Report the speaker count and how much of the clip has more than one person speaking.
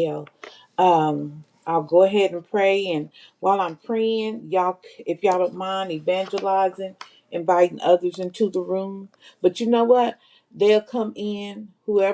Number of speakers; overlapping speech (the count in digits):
1, no overlap